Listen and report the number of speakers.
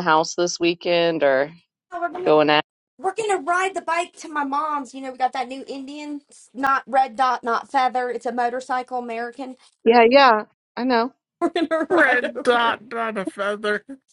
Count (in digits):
3